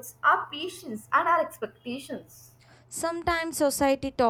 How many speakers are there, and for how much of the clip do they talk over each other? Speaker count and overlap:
2, no overlap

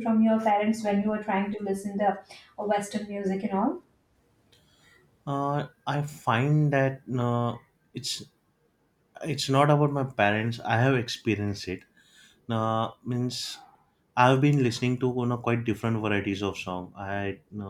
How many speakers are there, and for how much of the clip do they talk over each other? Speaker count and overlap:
2, no overlap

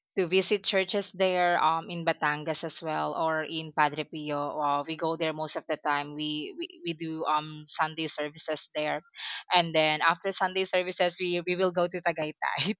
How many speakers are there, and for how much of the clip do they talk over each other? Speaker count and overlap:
1, no overlap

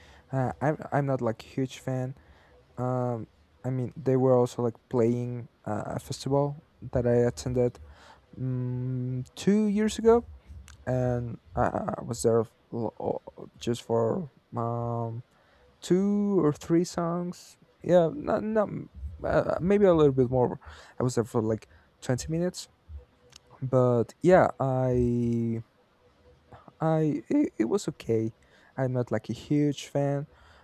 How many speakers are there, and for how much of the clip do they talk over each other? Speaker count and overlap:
1, no overlap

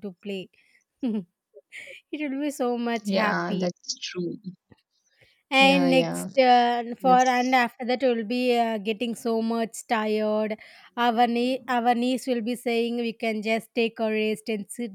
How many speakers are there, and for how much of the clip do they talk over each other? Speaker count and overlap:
2, about 10%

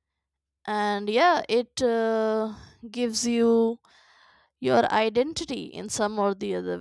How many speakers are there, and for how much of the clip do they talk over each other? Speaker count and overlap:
1, no overlap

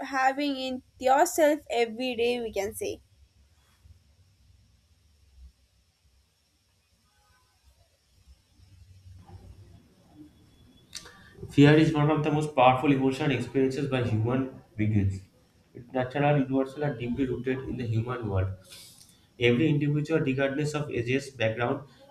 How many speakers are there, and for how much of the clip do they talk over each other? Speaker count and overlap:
2, no overlap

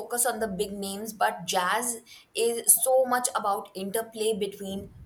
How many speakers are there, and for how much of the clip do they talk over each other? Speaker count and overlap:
1, no overlap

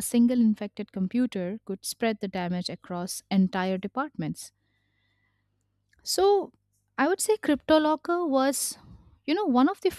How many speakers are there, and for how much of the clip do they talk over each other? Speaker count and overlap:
1, no overlap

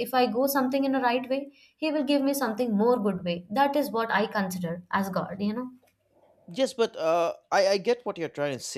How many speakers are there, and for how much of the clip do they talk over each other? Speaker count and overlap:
2, no overlap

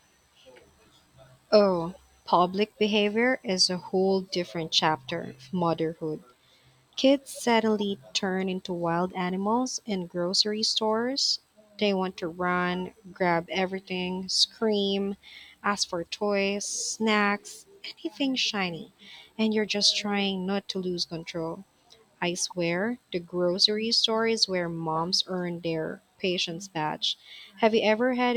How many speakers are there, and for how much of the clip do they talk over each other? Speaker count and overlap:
1, no overlap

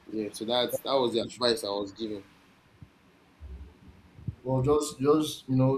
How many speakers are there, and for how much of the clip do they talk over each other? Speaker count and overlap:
2, no overlap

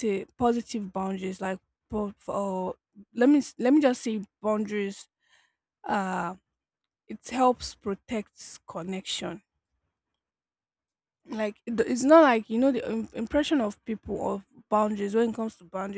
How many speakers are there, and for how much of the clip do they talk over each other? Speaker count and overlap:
1, no overlap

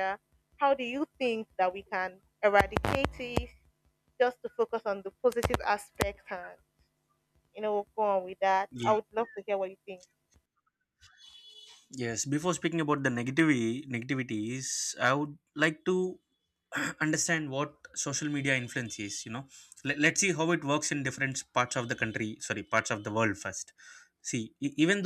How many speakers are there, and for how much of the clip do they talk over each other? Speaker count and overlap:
2, about 1%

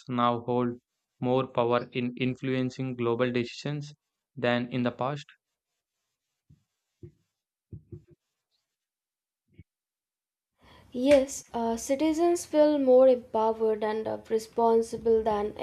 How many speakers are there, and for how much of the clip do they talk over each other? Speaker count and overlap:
2, no overlap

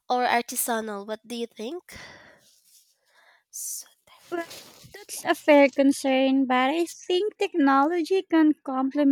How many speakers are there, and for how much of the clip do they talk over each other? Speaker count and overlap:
2, no overlap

